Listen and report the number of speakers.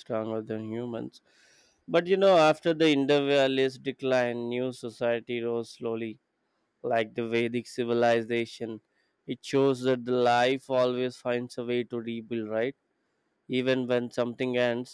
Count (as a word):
one